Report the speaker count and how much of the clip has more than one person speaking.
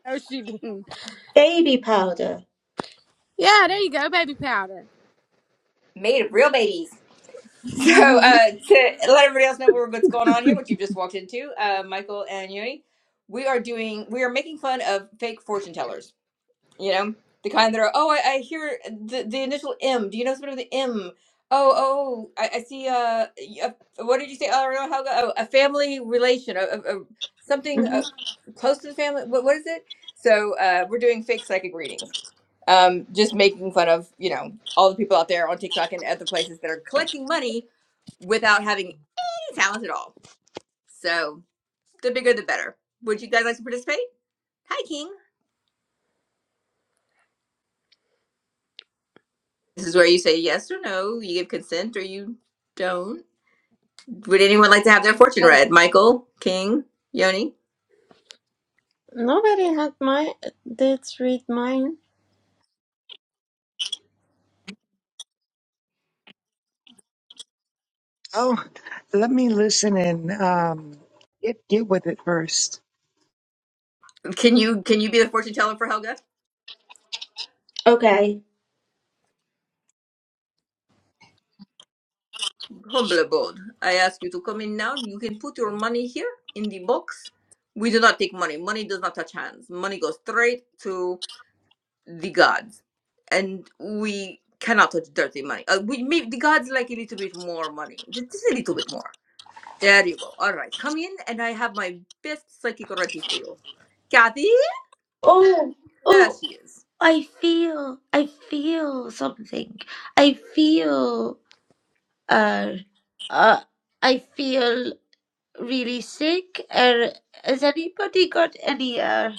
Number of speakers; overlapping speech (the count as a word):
five, under 1%